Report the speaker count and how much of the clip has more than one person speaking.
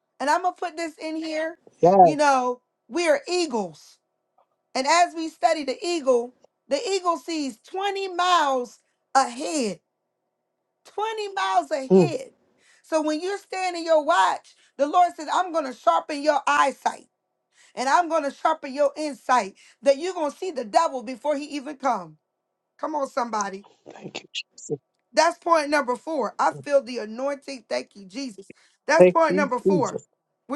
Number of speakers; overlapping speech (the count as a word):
two, about 4%